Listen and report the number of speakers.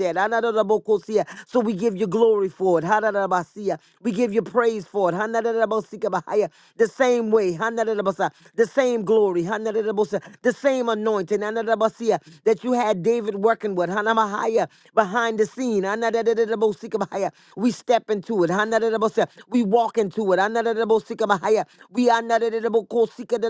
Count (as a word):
one